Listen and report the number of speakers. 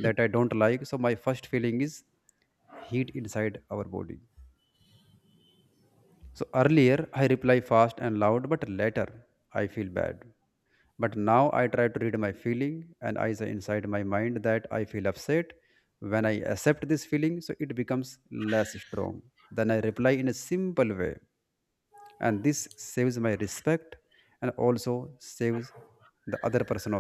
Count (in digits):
1